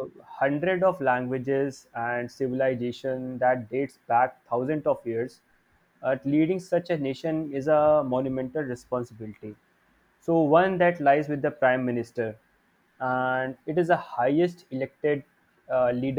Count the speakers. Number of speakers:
one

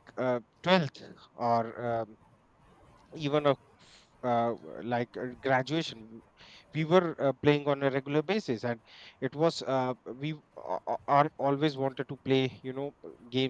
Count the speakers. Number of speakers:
one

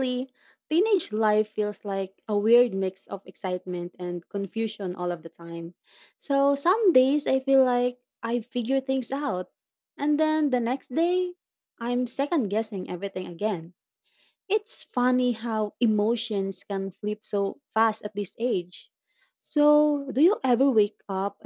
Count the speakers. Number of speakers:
one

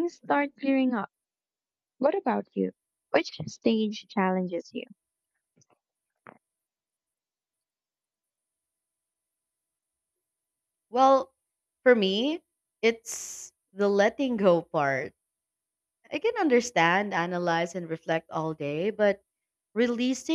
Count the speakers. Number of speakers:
two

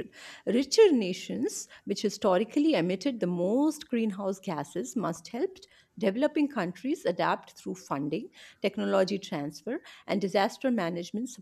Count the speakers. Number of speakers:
one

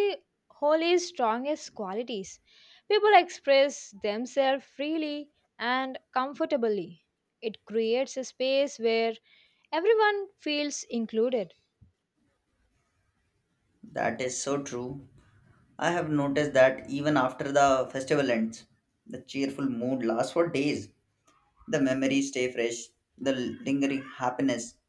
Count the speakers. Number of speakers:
two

